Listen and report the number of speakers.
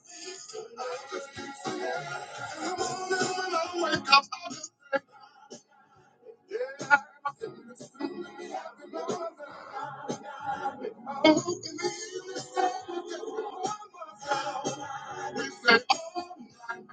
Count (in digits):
0